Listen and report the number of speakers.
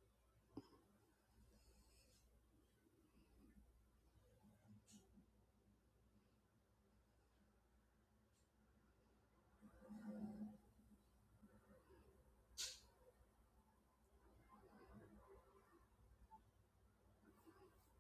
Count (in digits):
0